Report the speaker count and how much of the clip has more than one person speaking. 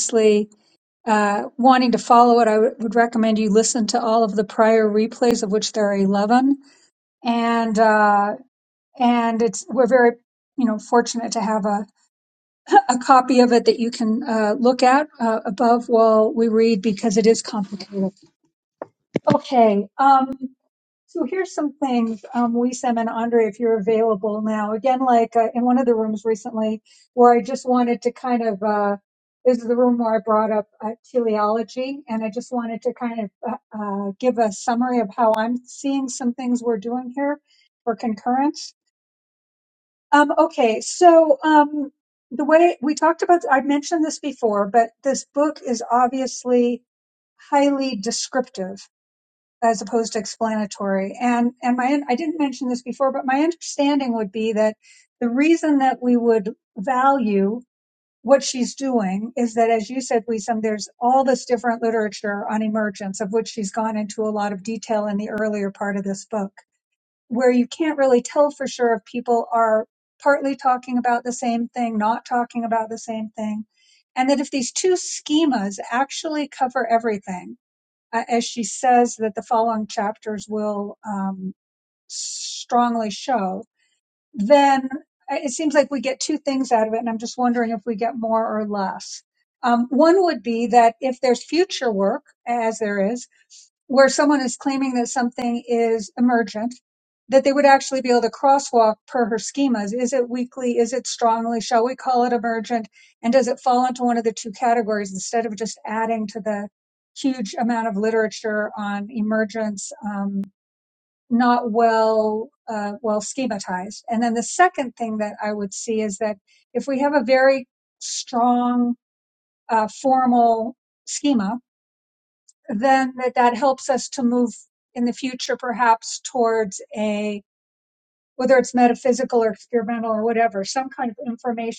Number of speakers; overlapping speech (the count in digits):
1, no overlap